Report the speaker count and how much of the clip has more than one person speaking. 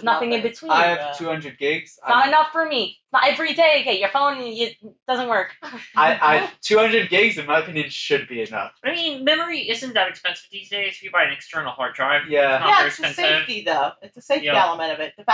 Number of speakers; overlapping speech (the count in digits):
4, about 25%